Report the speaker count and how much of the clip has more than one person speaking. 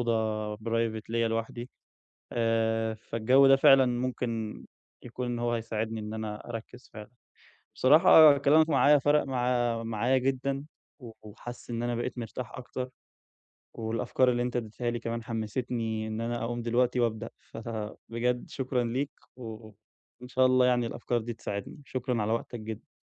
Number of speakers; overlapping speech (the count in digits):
1, no overlap